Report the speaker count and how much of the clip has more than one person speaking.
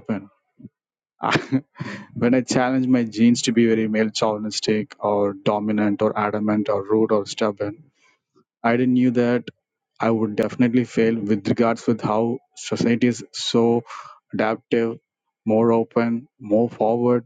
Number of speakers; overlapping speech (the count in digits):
1, no overlap